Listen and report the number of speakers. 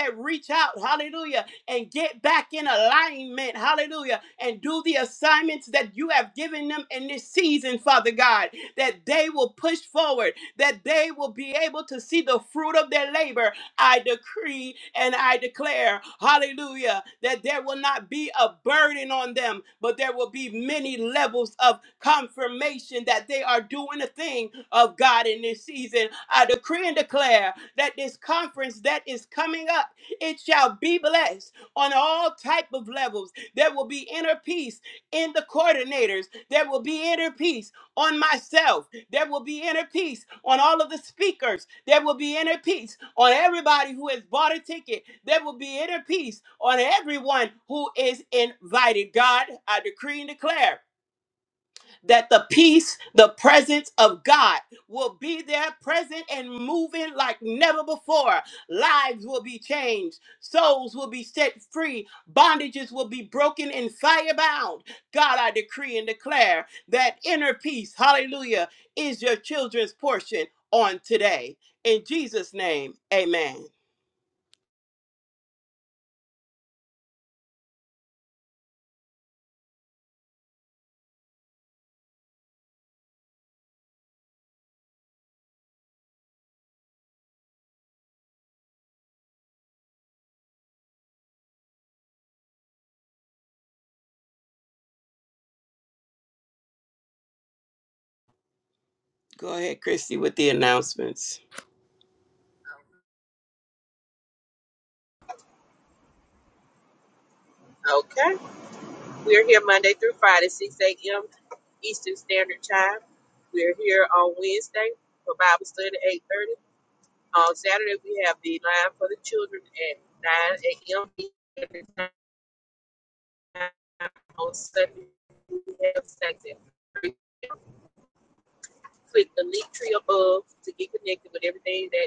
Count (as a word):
two